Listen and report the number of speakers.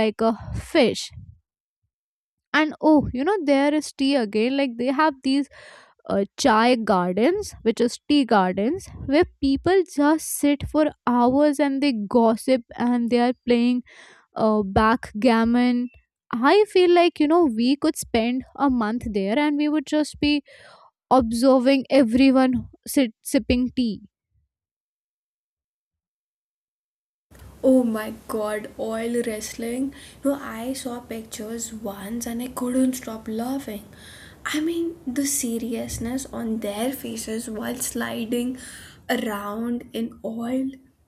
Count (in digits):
2